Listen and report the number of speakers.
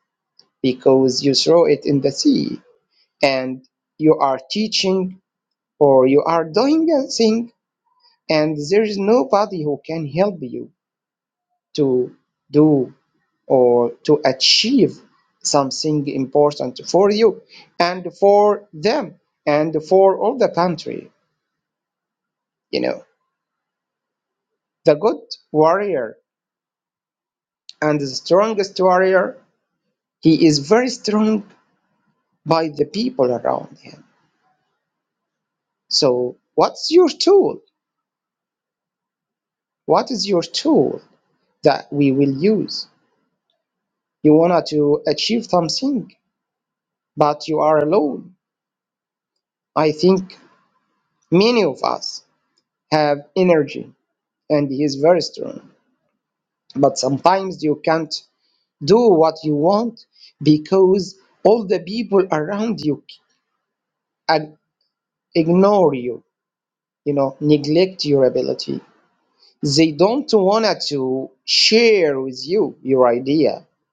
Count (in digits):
1